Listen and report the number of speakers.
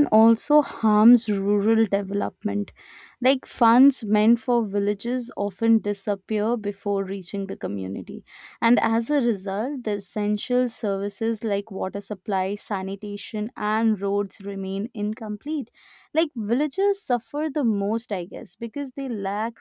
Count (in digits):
1